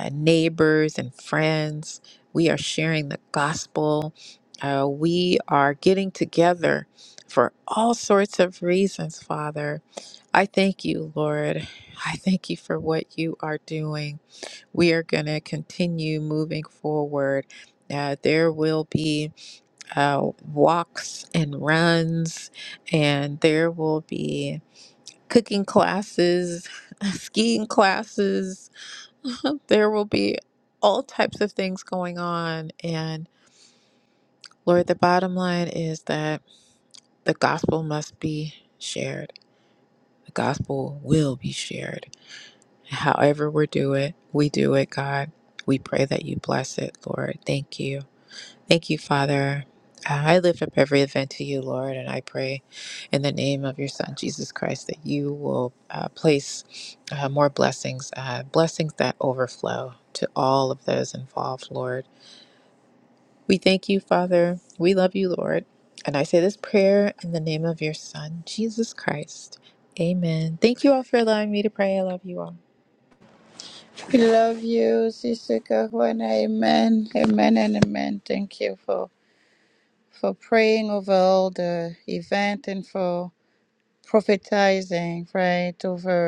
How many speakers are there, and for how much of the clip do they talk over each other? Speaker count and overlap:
2, no overlap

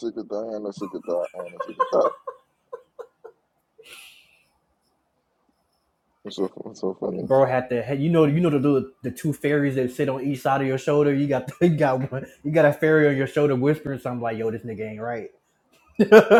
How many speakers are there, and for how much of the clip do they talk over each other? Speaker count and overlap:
2, under 1%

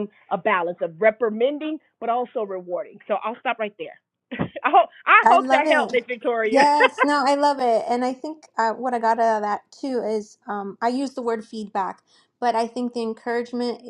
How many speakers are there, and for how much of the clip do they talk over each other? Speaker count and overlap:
2, about 7%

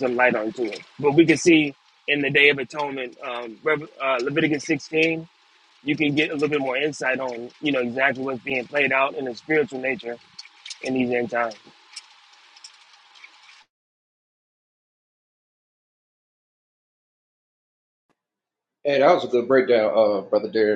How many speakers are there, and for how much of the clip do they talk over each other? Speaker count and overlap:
2, no overlap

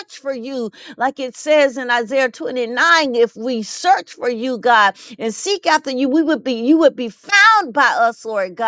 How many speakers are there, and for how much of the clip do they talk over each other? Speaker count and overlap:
1, no overlap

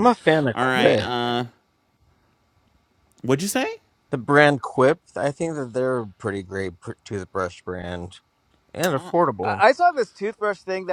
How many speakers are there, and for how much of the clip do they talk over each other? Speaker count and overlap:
3, about 9%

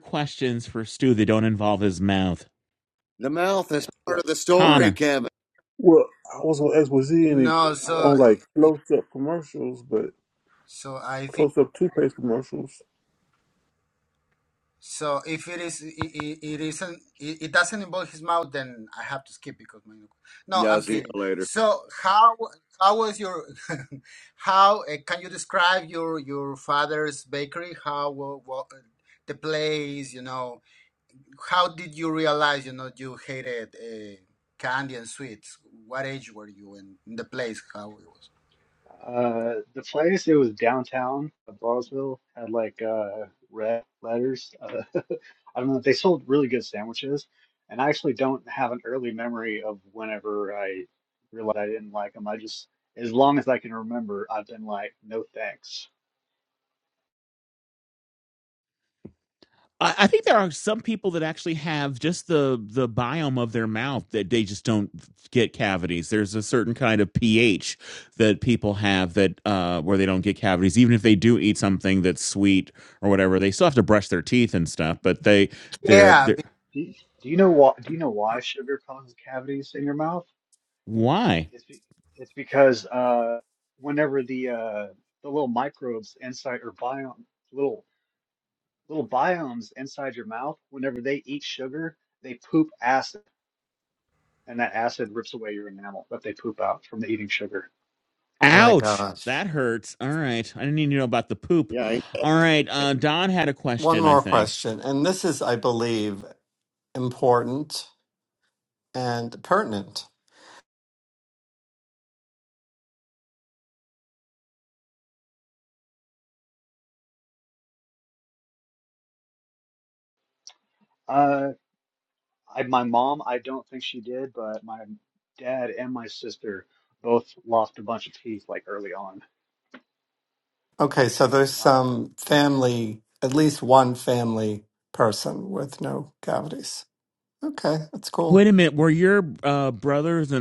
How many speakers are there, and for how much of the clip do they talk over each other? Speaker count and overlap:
6, about 3%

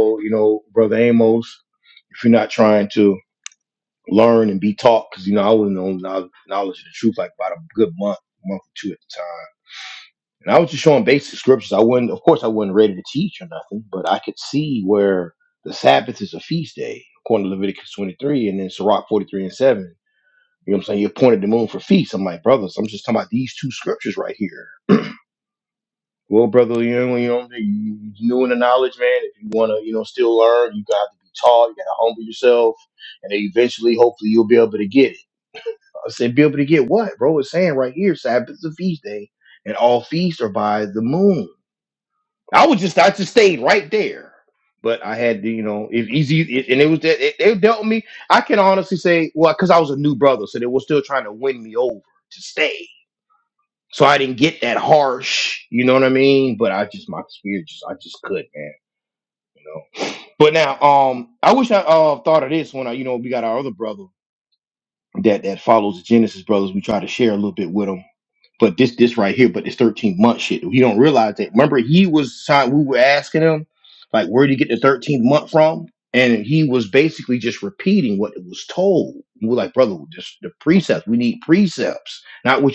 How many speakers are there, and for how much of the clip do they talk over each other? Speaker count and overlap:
1, no overlap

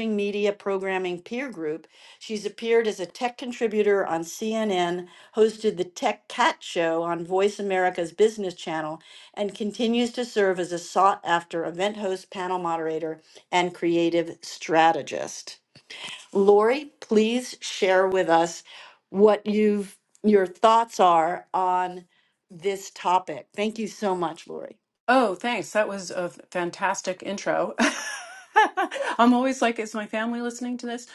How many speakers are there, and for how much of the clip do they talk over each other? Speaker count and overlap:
2, no overlap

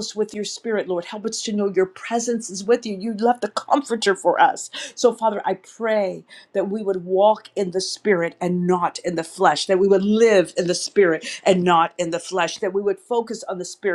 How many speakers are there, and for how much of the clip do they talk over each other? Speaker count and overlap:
1, no overlap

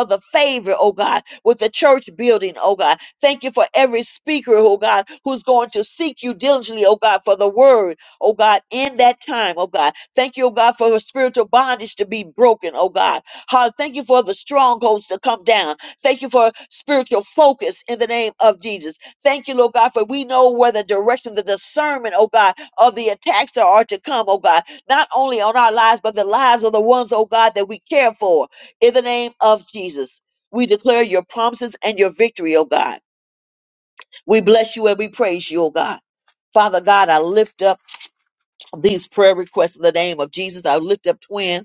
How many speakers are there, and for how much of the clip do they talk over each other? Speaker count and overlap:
1, no overlap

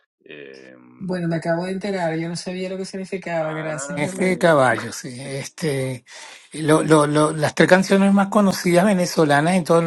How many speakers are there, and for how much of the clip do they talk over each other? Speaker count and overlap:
3, about 14%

